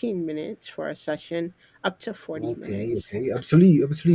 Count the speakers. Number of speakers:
two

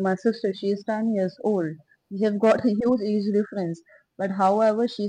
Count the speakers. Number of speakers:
one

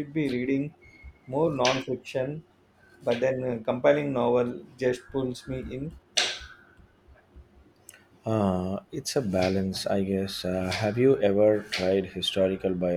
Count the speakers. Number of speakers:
two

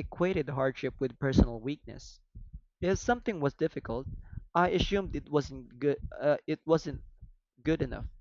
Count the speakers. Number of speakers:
one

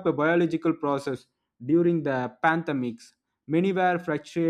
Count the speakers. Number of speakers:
one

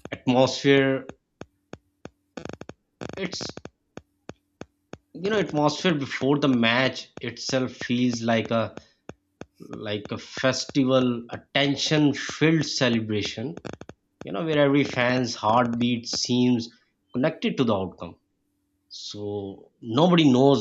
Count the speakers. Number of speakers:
one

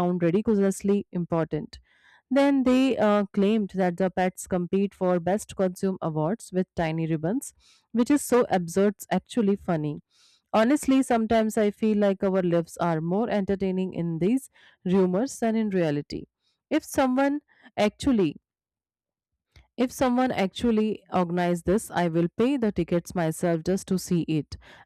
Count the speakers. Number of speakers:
one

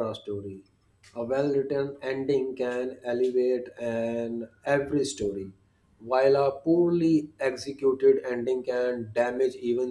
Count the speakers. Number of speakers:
one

